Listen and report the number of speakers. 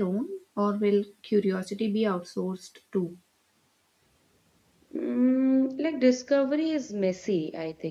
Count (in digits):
2